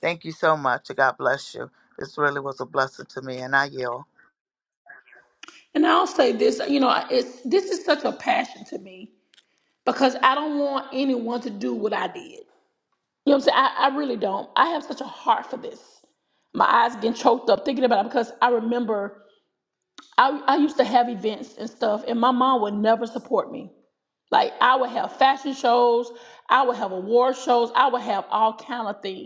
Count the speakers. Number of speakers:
two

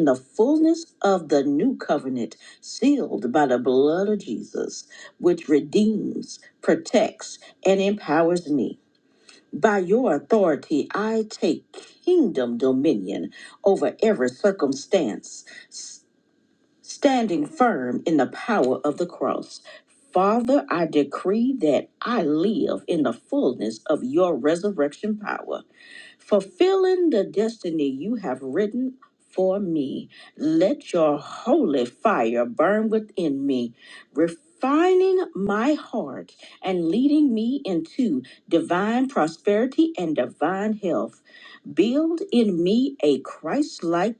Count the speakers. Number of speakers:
one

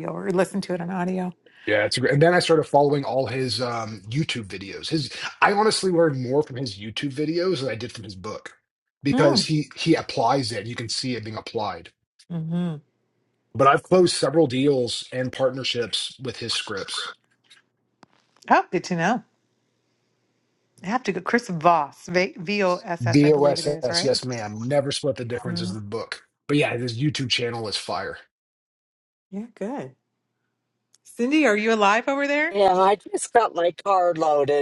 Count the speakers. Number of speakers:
three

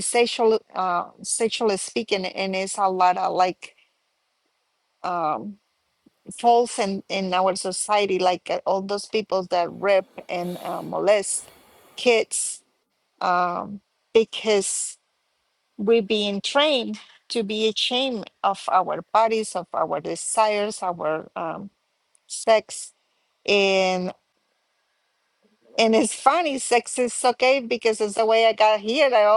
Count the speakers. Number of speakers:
one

